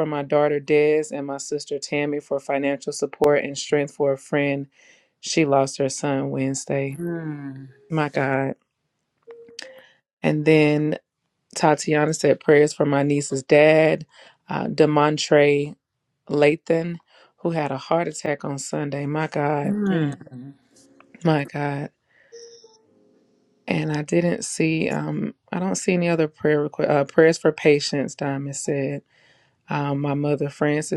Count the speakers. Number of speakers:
2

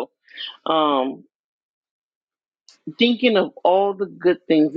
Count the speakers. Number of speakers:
1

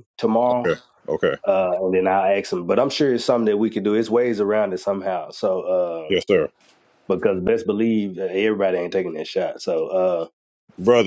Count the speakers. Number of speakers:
2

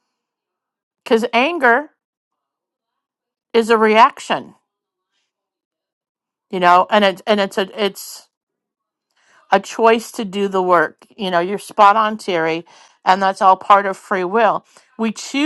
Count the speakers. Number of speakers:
1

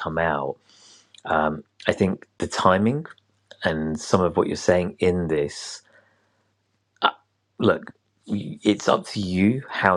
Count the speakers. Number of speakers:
1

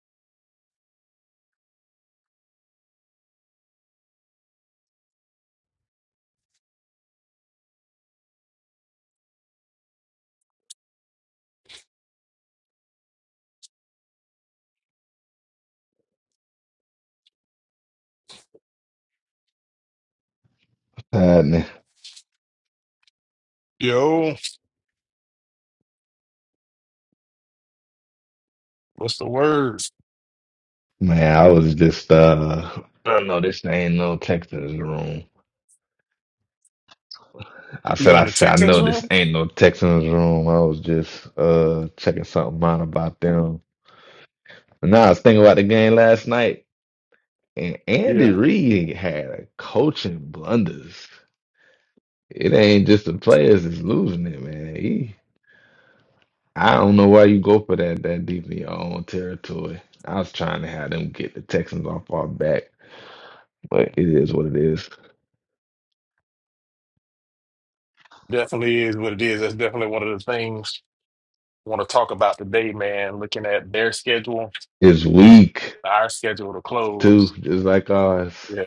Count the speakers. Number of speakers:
2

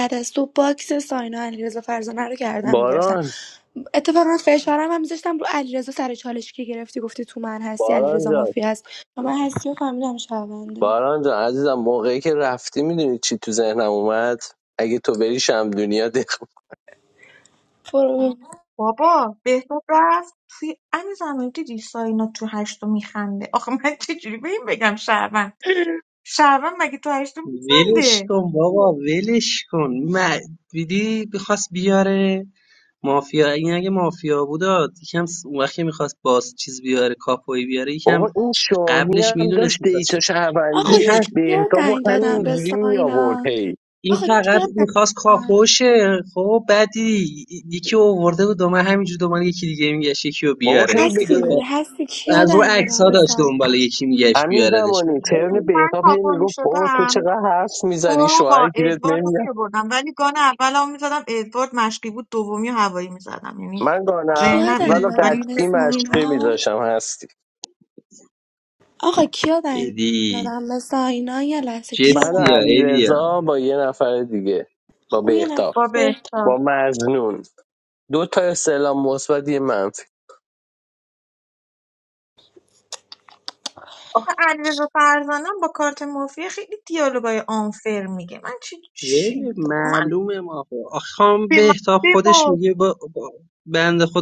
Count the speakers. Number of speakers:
4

